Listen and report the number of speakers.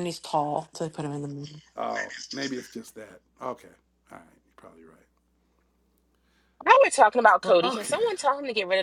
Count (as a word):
three